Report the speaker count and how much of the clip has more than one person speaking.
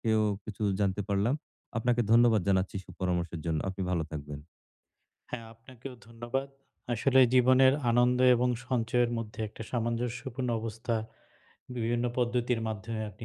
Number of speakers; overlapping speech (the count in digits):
2, no overlap